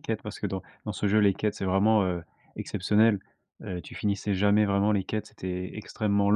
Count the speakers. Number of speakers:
1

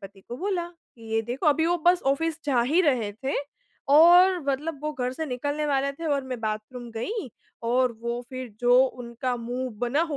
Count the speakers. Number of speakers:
1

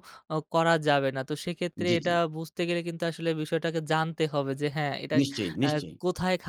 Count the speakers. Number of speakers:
2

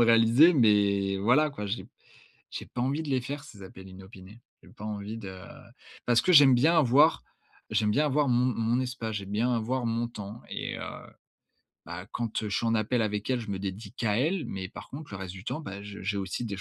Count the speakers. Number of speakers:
1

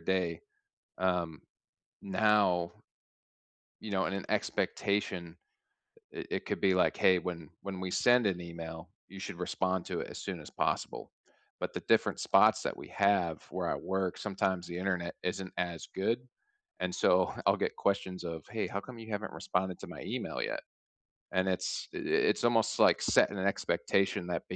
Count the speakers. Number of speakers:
1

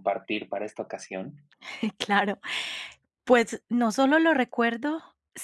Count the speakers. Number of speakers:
2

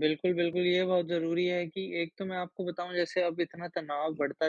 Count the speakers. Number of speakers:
1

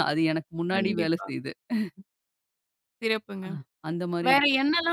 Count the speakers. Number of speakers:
2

